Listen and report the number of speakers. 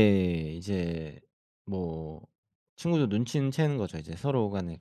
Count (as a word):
one